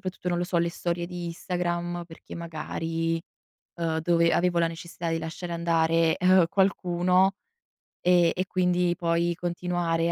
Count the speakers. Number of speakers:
one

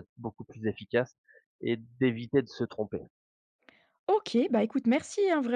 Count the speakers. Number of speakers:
two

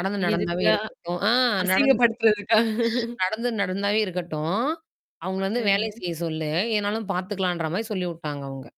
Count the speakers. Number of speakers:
two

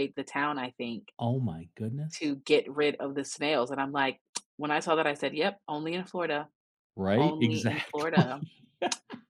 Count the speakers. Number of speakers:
two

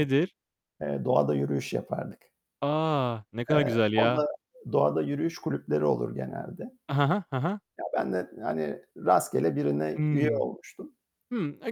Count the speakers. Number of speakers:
two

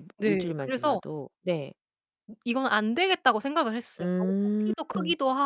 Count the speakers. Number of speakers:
two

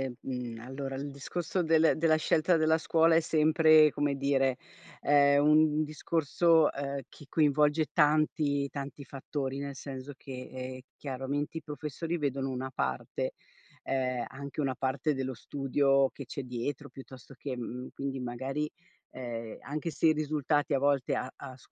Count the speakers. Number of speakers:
one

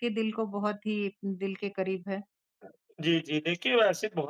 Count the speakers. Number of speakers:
two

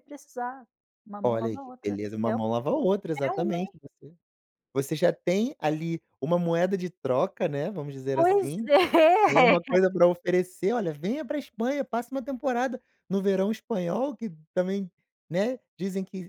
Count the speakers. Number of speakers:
two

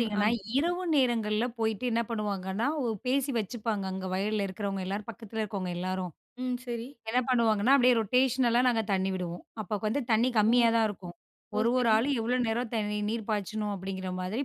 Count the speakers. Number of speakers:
two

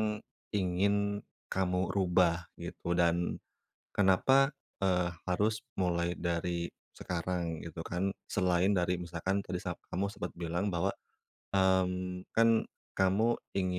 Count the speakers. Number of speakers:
one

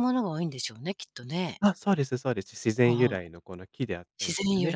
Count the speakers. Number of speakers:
two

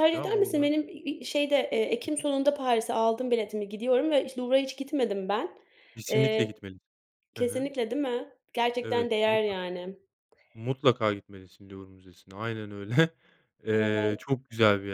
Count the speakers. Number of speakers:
two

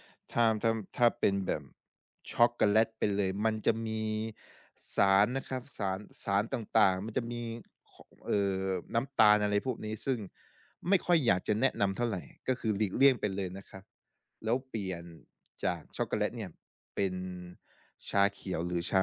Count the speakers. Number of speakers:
one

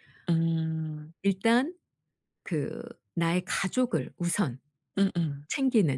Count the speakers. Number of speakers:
two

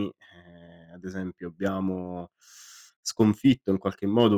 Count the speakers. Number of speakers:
one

